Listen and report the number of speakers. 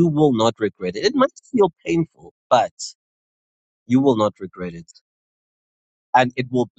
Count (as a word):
one